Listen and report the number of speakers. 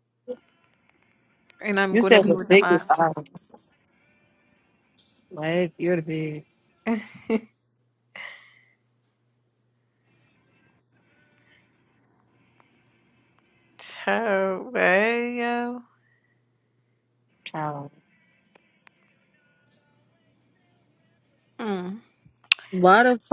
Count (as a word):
two